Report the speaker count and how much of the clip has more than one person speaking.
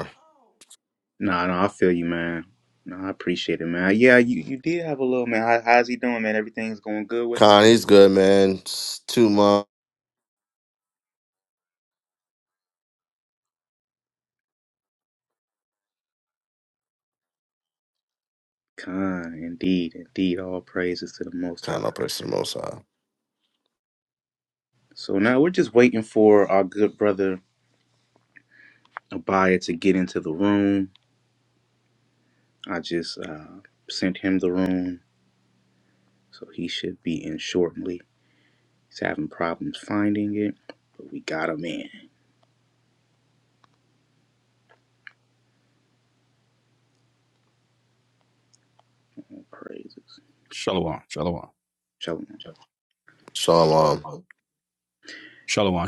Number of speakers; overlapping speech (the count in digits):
3, about 1%